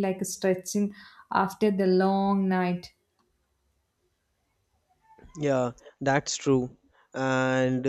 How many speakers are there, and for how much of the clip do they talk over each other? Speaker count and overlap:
2, no overlap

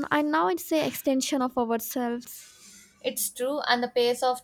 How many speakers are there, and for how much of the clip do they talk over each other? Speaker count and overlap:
2, no overlap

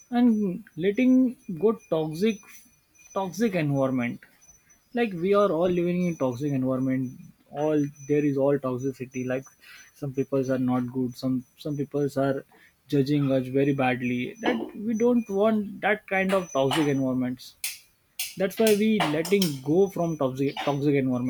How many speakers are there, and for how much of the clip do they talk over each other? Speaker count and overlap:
1, no overlap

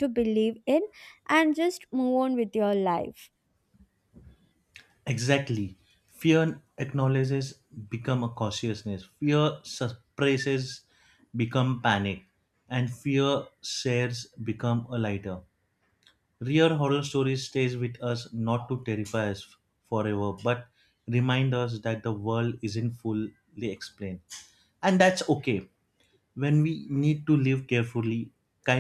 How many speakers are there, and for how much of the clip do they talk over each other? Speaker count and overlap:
2, no overlap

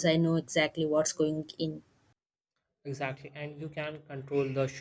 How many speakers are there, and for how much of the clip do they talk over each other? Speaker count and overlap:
2, no overlap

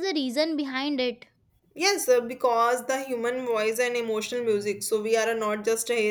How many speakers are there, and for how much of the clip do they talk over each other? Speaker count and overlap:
2, no overlap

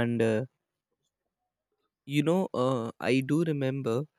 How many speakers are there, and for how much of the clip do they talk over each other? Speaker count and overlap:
1, no overlap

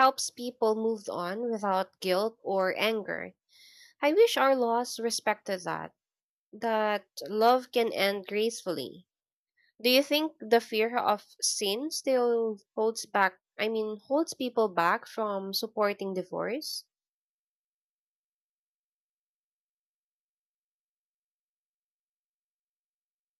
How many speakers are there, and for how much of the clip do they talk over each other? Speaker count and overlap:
1, no overlap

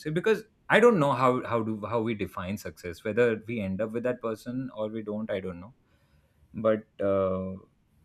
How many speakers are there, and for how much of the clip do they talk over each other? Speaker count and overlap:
1, no overlap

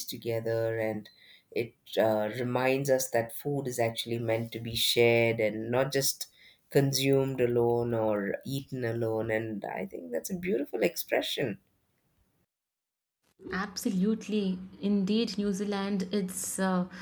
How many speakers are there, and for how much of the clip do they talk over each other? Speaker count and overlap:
2, no overlap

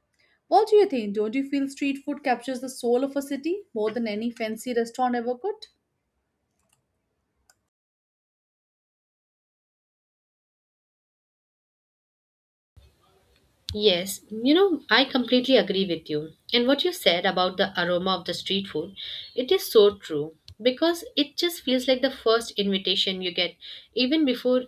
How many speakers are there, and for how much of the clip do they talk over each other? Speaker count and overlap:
2, no overlap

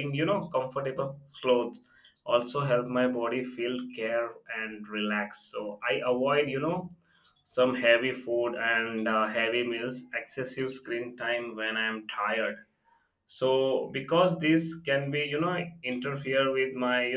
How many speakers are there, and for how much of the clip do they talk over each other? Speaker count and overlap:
1, no overlap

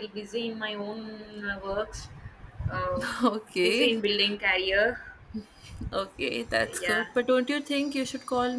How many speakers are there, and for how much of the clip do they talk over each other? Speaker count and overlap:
2, about 9%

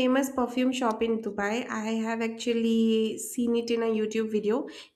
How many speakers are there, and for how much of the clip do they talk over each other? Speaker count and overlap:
1, no overlap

